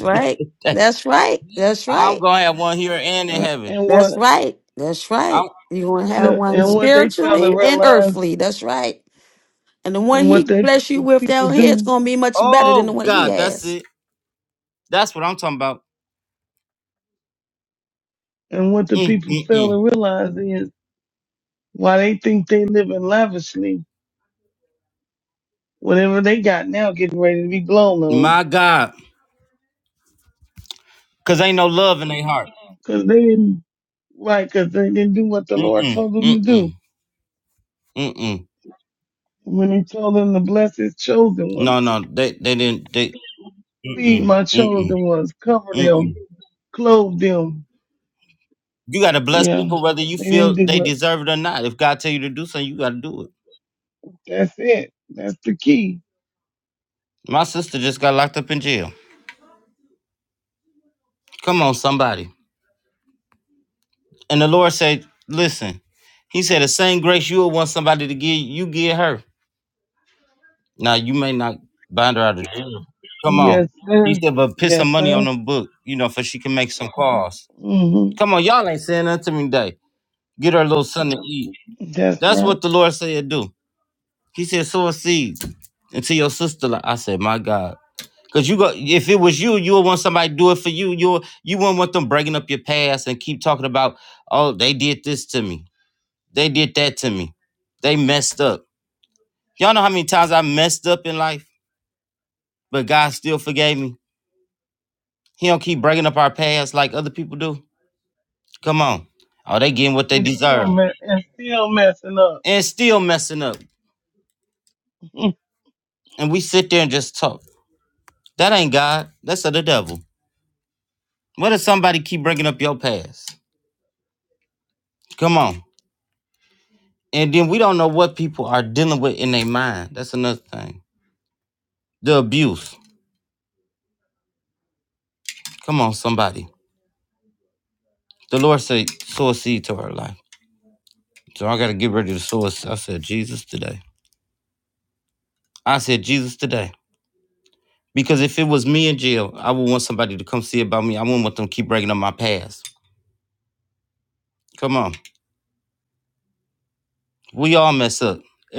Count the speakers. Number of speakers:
3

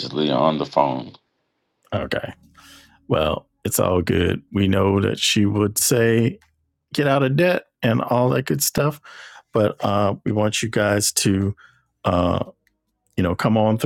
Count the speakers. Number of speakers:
2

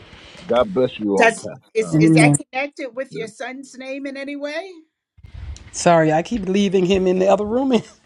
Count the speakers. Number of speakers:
3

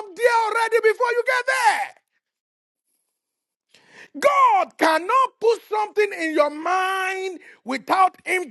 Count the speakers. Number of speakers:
1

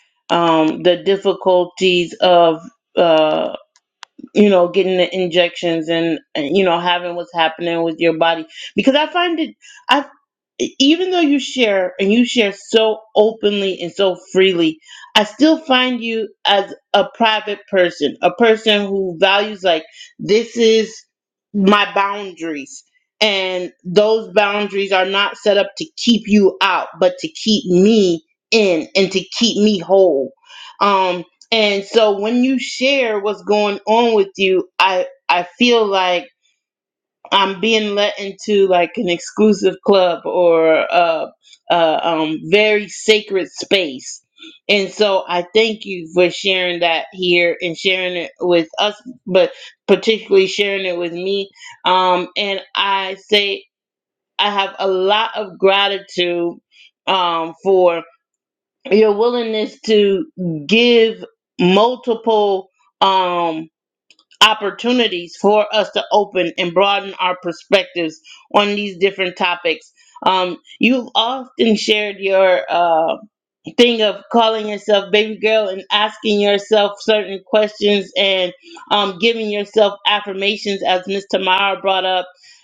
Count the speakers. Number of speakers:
1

